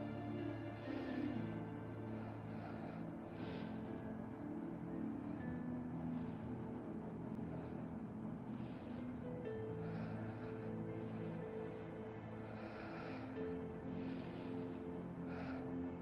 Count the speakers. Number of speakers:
0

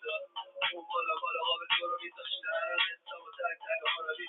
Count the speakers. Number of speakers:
0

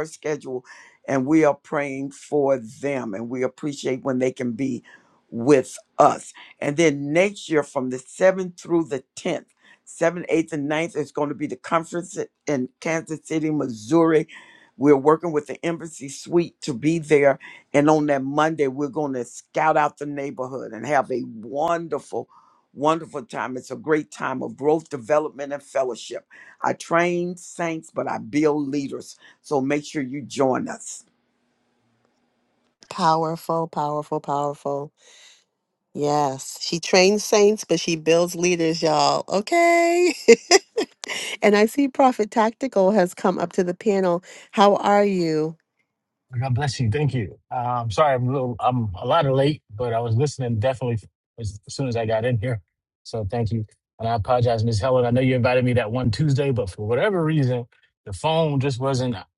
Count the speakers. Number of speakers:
3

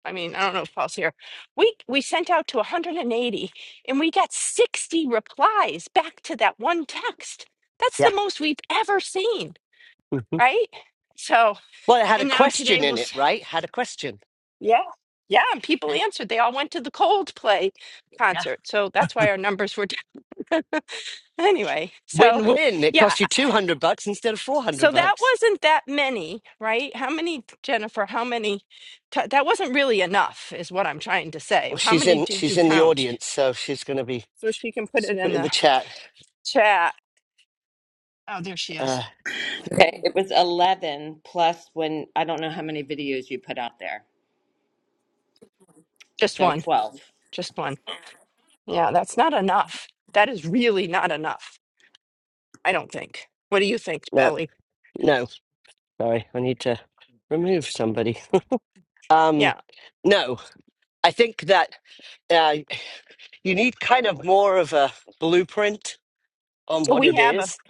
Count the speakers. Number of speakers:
3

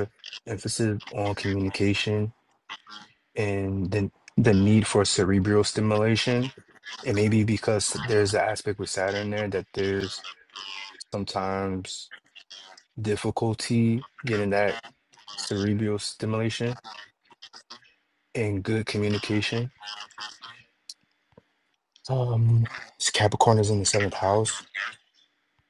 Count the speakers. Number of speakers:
1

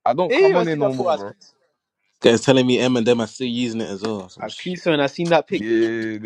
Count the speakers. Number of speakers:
3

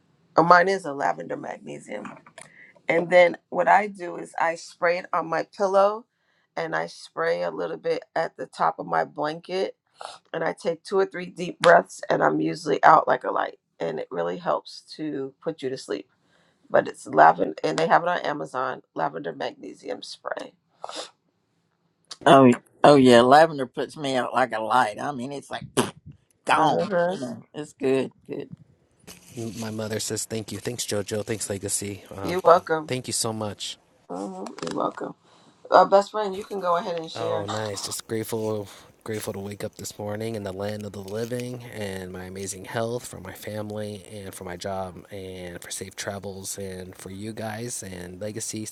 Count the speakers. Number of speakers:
3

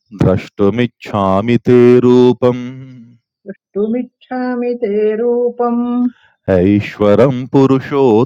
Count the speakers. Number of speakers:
2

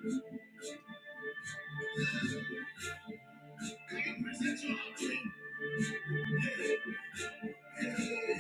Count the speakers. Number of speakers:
0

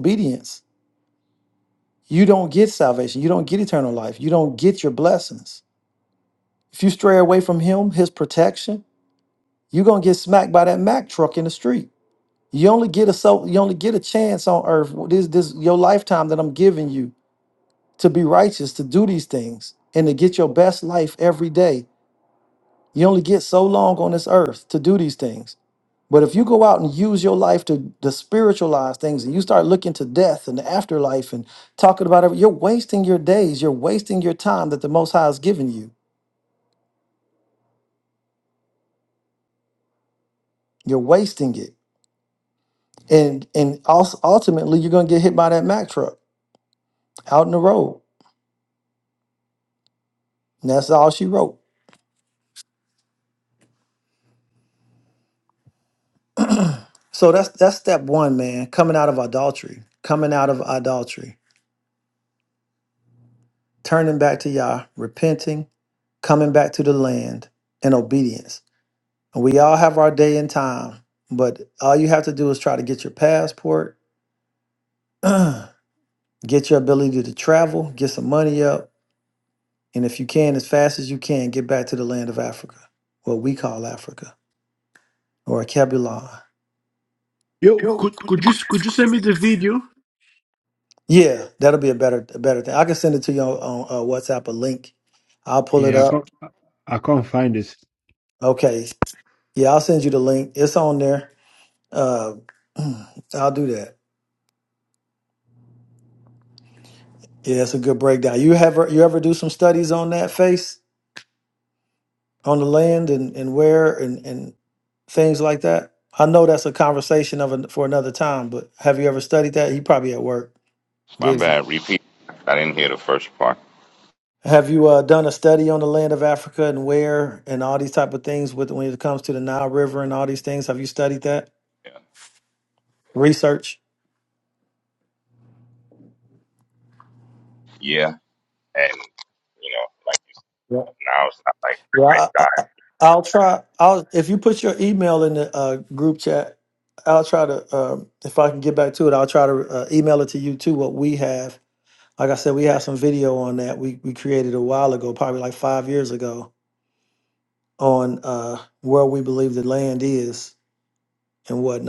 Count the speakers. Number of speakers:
3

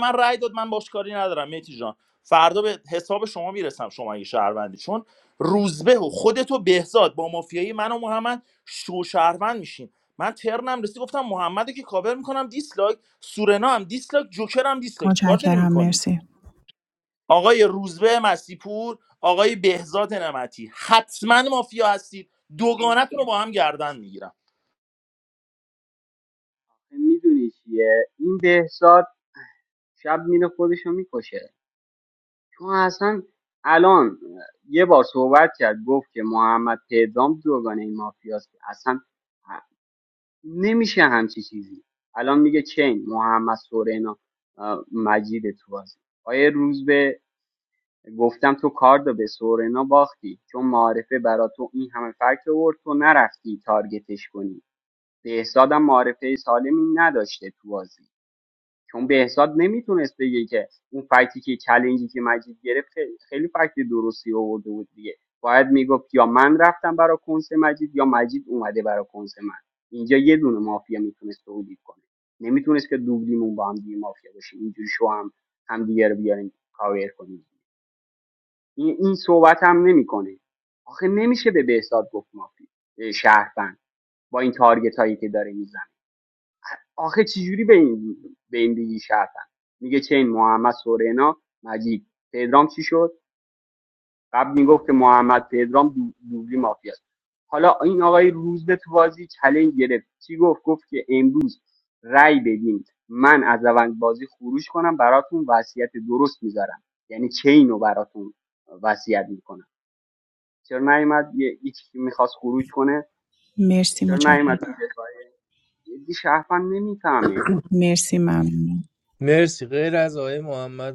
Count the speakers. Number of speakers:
4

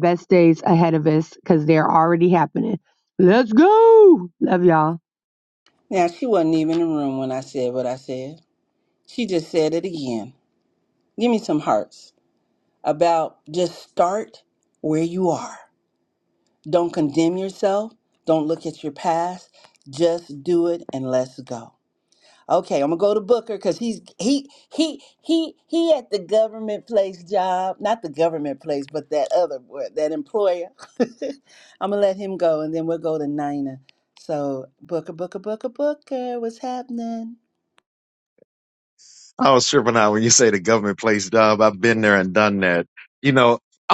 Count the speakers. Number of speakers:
3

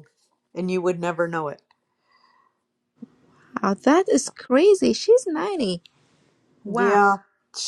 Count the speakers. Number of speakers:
2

